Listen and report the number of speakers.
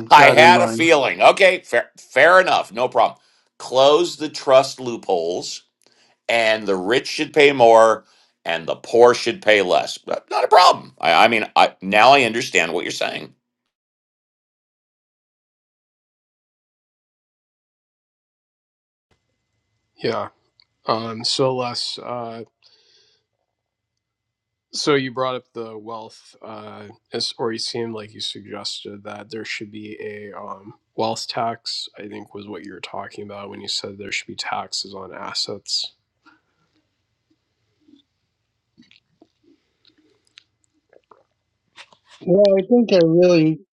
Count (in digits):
3